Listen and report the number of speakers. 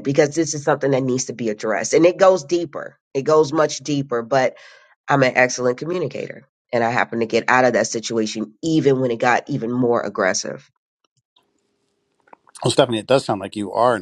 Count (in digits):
2